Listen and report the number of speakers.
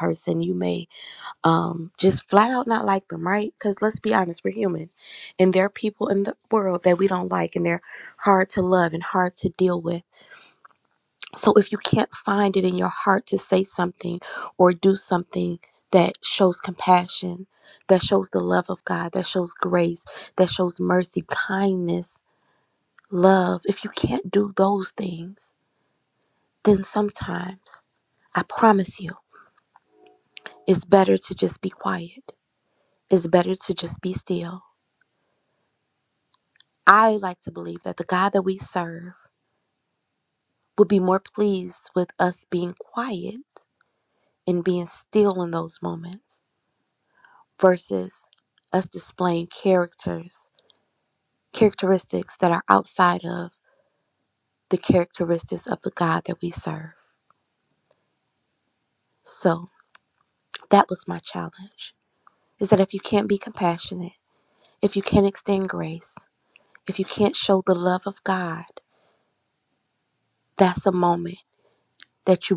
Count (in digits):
1